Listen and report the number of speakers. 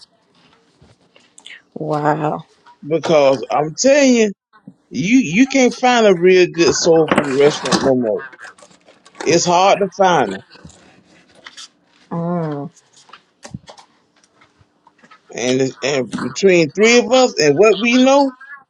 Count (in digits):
2